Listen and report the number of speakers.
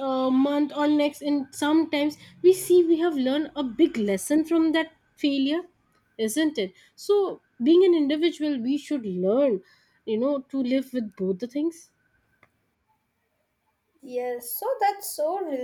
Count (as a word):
two